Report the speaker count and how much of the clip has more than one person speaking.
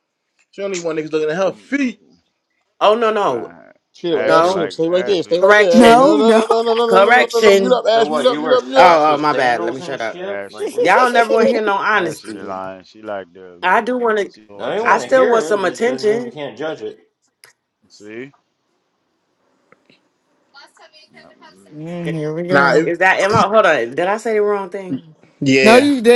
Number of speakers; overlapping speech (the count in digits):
5, about 38%